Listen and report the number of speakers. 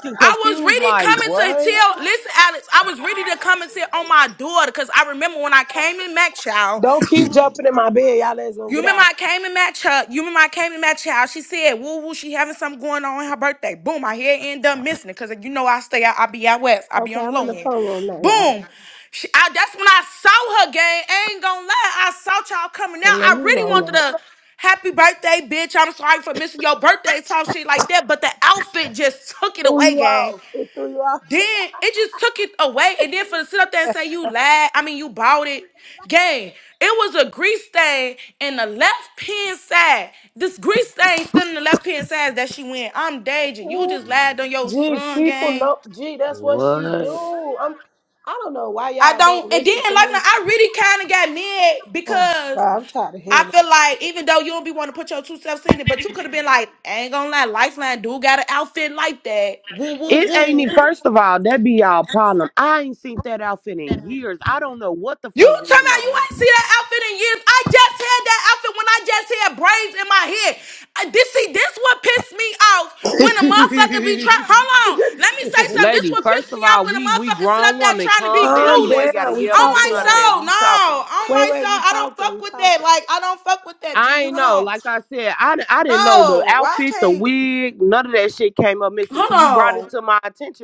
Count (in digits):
3